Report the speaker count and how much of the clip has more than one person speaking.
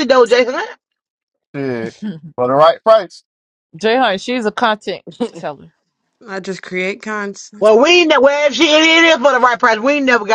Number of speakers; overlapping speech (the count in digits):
4, no overlap